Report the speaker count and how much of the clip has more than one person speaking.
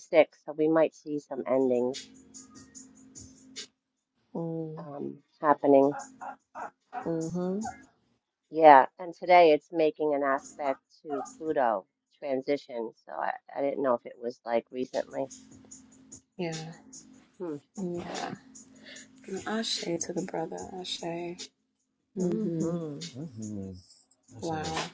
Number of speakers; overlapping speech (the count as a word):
four, about 4%